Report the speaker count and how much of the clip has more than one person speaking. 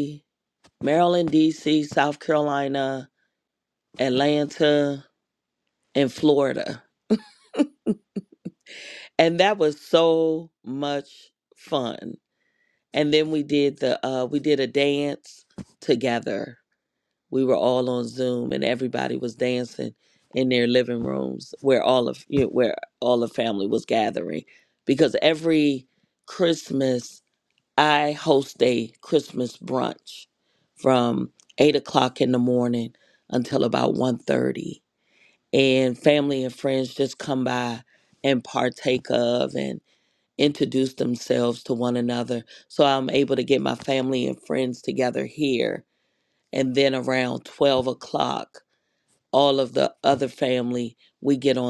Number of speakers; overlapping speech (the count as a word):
one, no overlap